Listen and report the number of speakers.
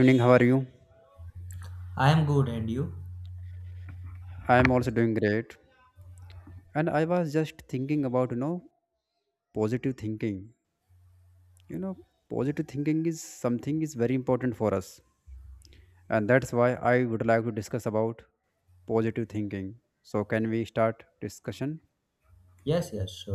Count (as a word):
two